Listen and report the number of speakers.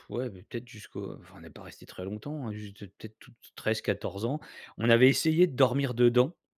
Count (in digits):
1